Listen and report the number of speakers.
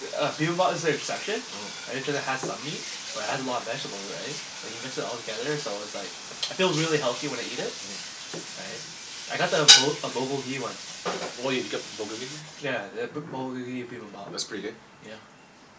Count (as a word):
two